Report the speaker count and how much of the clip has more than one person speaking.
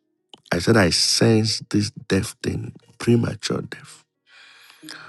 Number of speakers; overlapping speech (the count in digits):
1, no overlap